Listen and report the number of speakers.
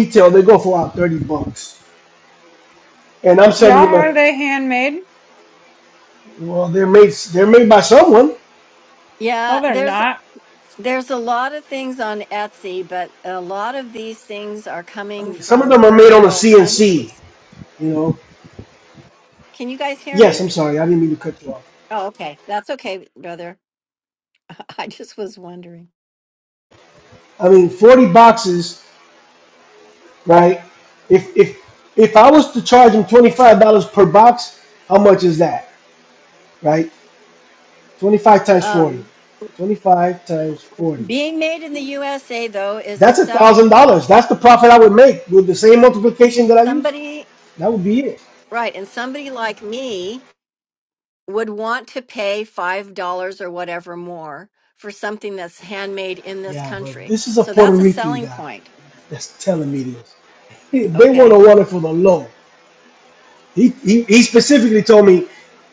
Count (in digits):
3